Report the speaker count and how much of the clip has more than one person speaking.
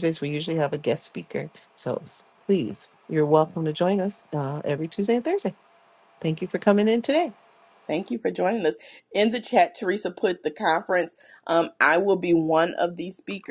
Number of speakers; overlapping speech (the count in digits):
2, no overlap